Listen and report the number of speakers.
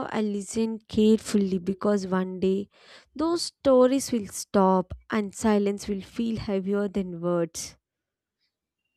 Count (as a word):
one